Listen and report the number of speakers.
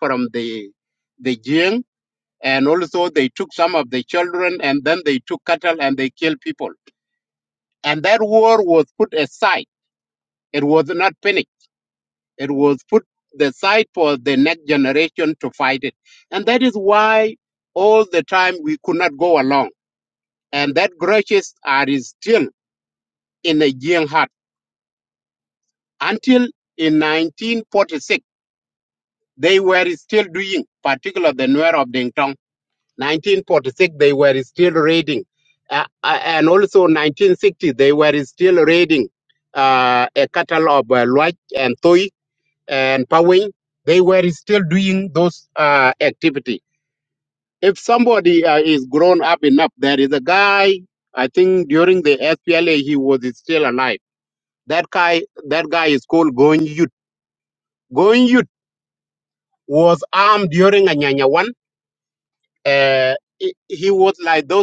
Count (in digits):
1